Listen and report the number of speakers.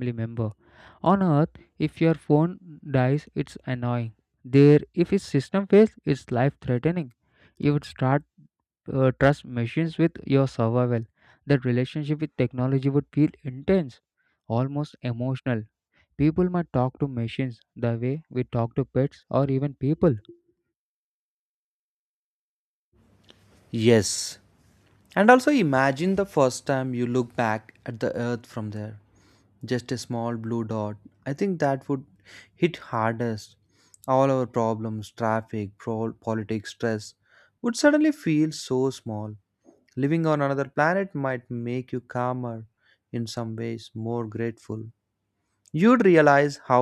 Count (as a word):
two